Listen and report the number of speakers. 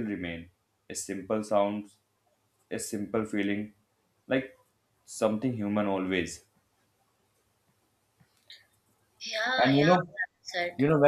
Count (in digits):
2